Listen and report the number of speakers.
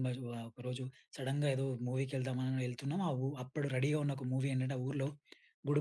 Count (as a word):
one